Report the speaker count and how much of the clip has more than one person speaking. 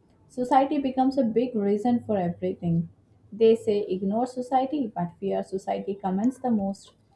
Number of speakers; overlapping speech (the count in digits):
1, no overlap